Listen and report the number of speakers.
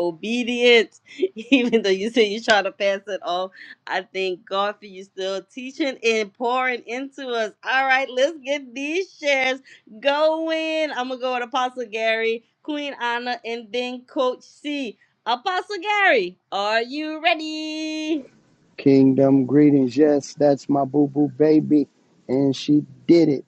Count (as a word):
two